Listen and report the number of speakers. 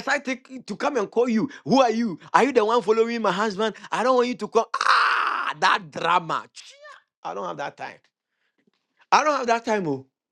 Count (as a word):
one